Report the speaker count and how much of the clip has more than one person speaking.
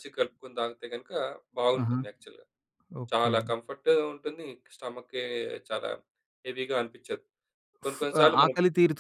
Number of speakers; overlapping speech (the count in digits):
2, about 11%